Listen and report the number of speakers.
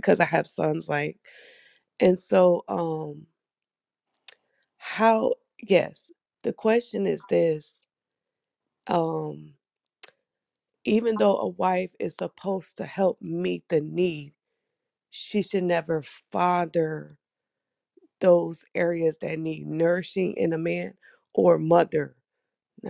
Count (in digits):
1